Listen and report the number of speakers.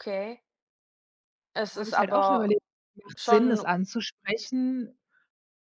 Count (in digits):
2